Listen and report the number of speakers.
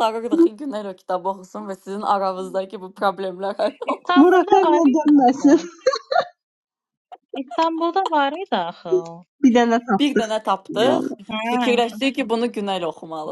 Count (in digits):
3